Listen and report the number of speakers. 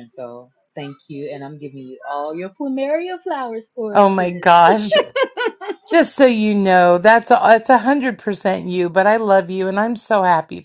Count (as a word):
two